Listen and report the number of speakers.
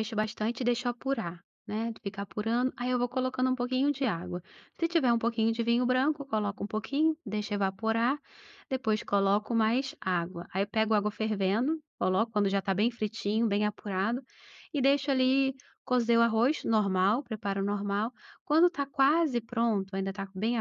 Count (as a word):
one